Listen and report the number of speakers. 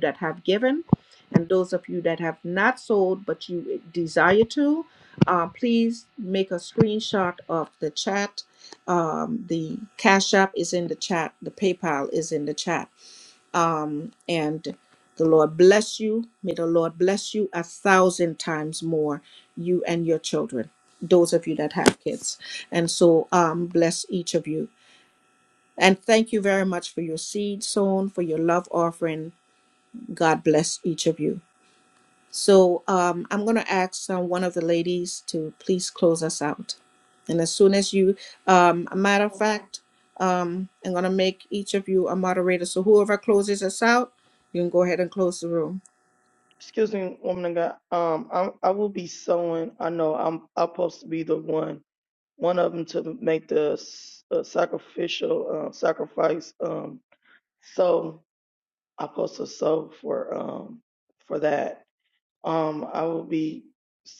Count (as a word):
two